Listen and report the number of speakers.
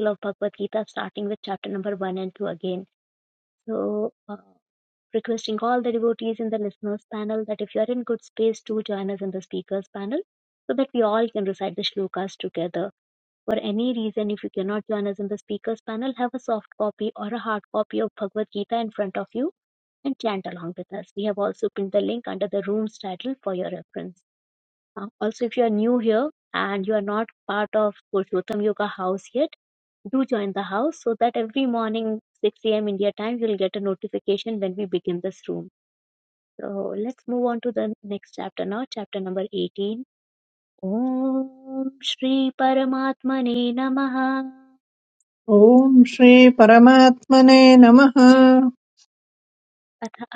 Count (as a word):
two